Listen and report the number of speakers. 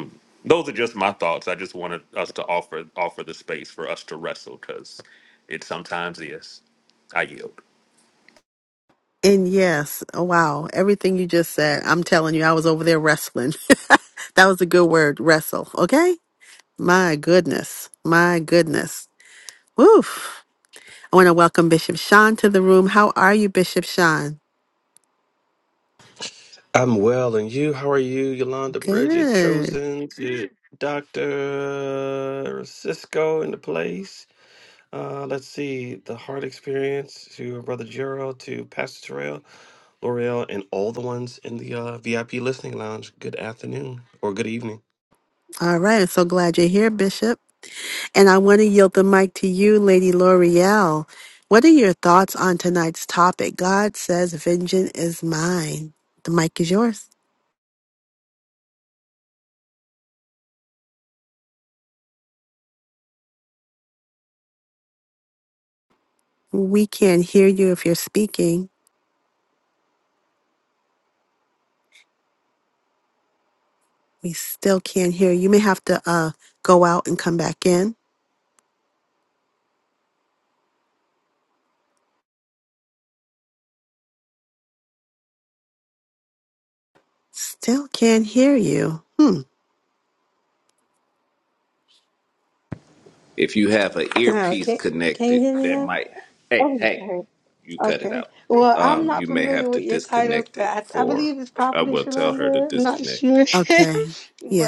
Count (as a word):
five